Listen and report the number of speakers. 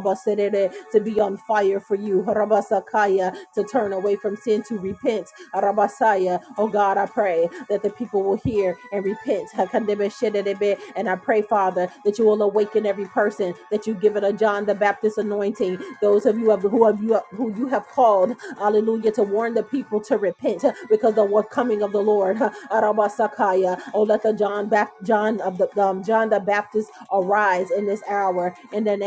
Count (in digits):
1